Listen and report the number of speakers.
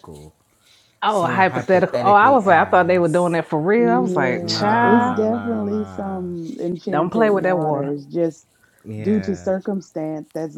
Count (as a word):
three